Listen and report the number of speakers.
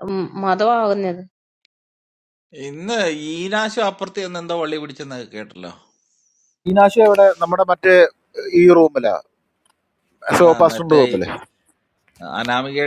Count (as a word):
three